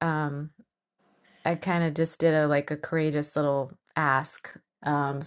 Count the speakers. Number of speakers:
one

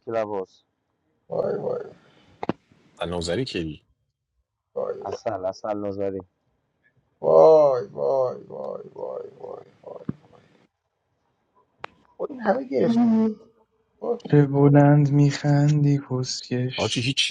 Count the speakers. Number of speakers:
four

